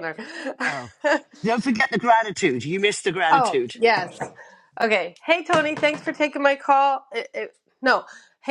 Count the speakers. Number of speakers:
two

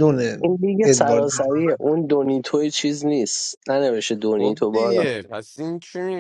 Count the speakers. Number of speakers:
three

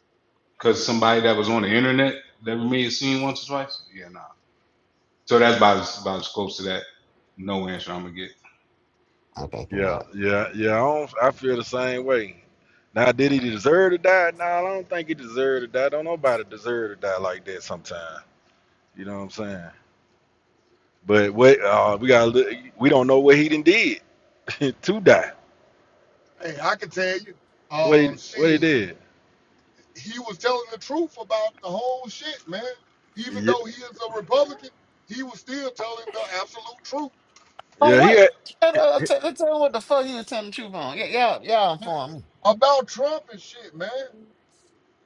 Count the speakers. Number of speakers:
four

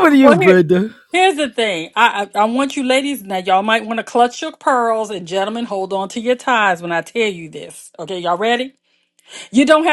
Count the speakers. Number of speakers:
two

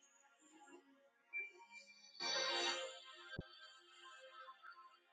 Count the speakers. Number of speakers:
zero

